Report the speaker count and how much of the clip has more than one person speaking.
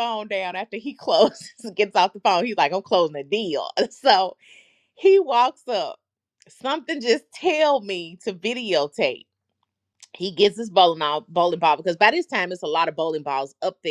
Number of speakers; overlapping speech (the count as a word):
one, no overlap